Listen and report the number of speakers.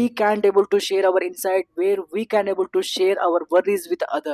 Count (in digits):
1